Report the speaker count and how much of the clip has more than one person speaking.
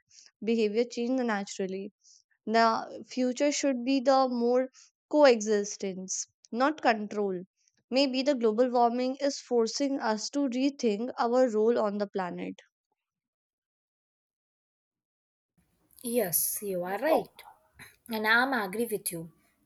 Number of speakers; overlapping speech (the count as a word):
two, no overlap